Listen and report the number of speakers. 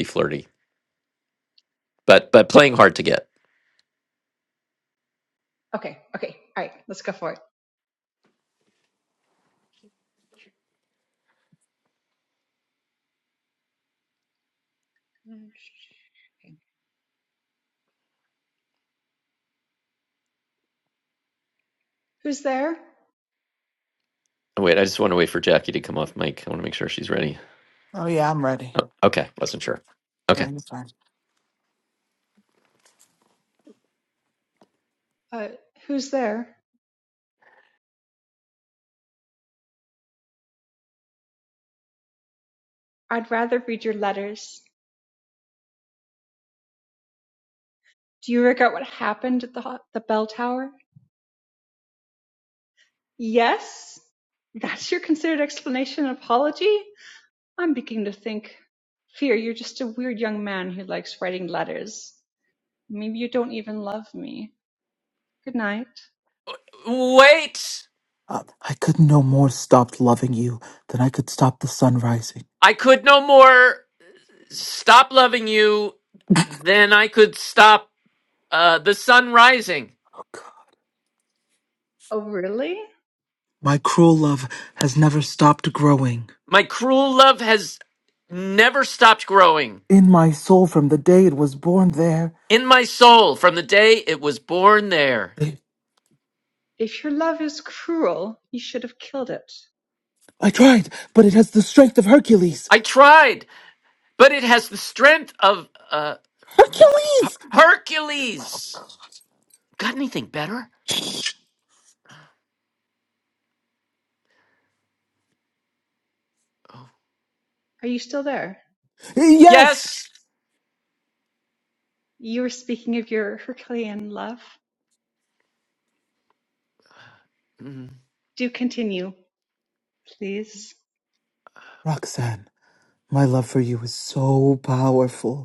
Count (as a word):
three